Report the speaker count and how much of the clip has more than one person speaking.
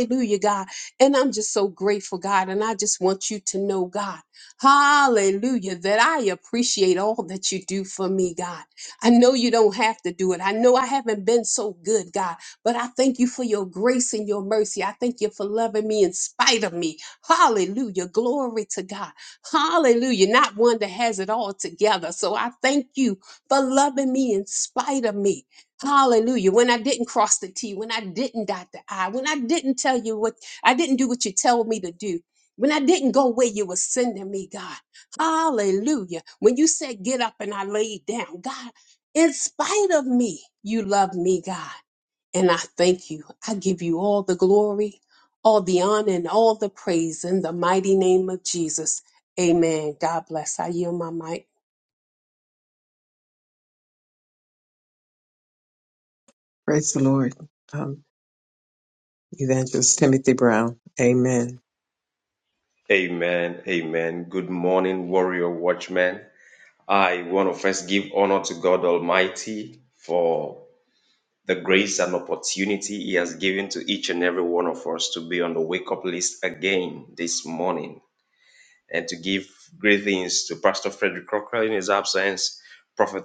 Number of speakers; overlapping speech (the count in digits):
3, no overlap